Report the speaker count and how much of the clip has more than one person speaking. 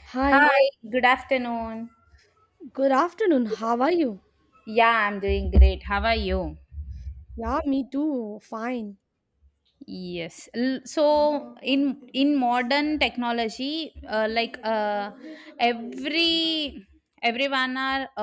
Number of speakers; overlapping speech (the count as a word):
two, about 1%